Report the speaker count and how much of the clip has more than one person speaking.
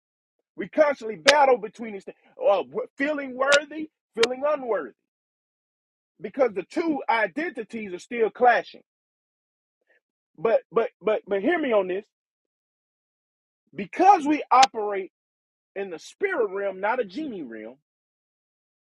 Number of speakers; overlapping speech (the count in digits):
1, no overlap